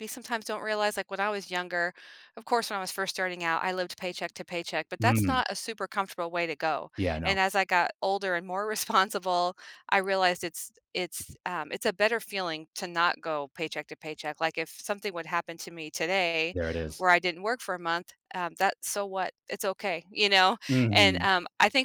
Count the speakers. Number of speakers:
2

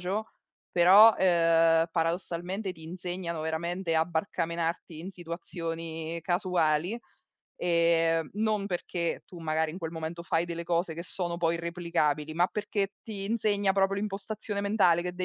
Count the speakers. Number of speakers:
1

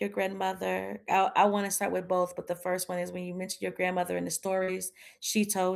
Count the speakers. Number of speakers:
1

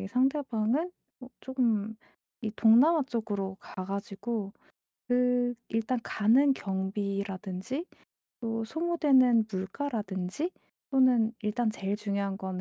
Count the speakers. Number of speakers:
1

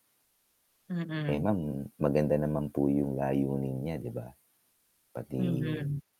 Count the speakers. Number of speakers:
2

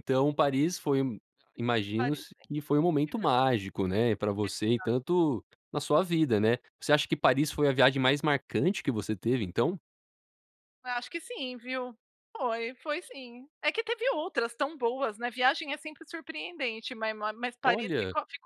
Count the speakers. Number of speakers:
2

